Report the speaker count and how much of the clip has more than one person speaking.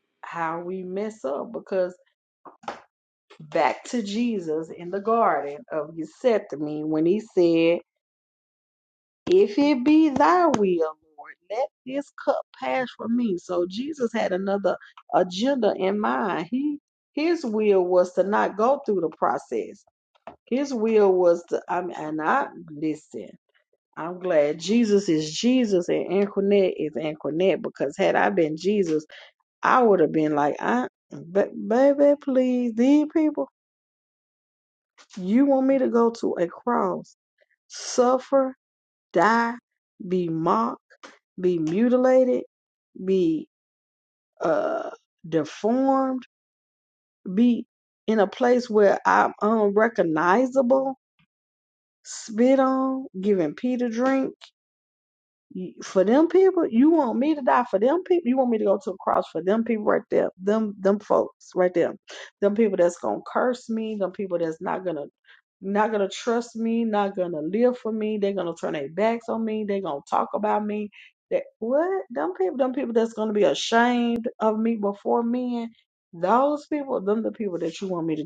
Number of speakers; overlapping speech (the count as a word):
one, no overlap